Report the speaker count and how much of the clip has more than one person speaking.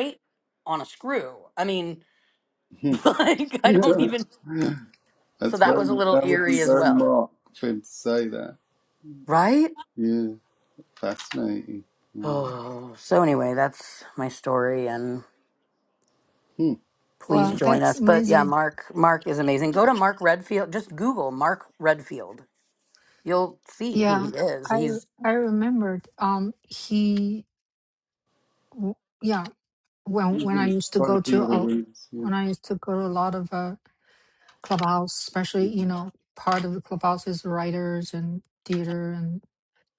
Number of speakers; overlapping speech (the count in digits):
3, about 15%